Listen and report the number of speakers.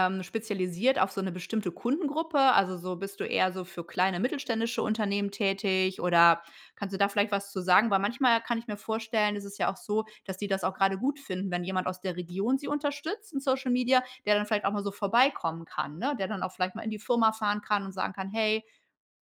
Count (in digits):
1